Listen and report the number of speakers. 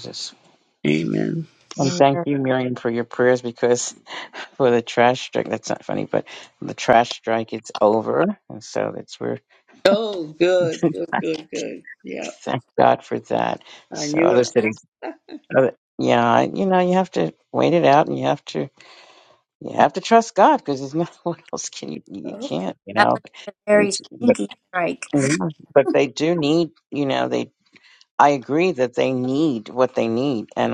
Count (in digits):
3